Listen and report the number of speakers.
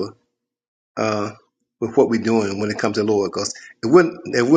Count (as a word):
one